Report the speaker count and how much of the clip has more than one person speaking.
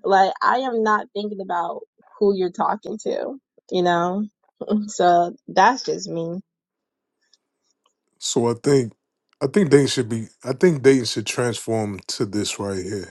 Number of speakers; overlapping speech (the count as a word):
two, no overlap